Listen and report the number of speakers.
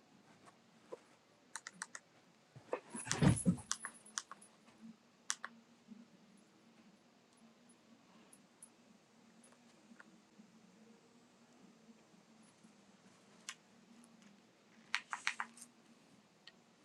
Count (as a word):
zero